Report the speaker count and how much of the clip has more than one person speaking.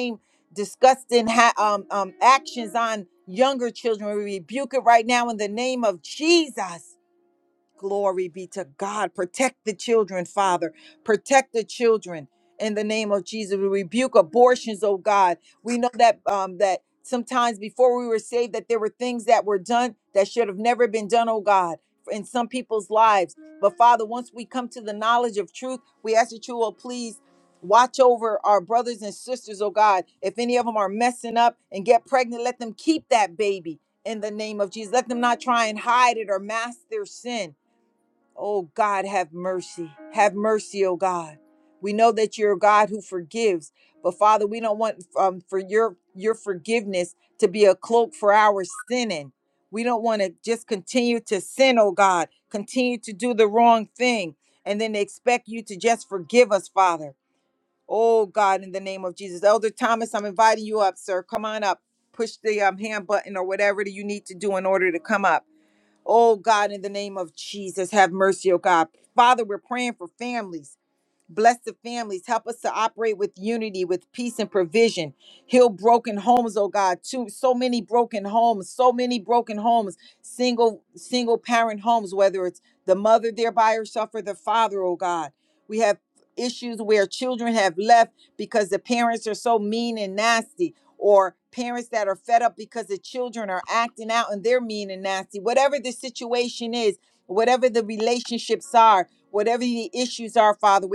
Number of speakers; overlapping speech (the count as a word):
one, no overlap